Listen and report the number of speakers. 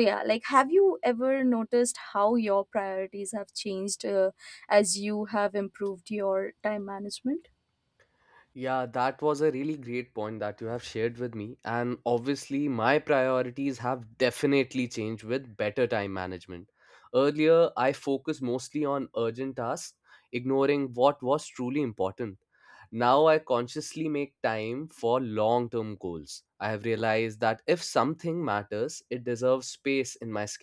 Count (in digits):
2